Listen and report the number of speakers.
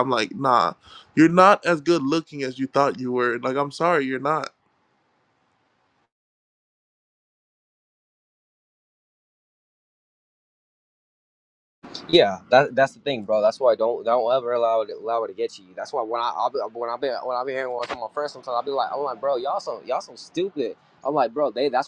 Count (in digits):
2